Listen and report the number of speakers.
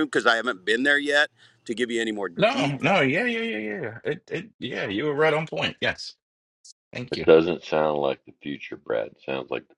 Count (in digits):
3